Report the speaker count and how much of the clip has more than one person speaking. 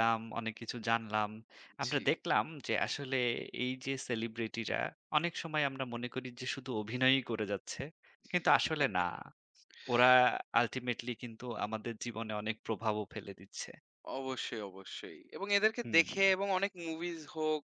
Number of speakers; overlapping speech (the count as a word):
two, about 2%